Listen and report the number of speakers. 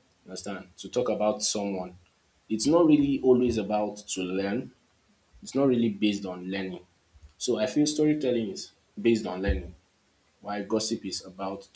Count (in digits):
1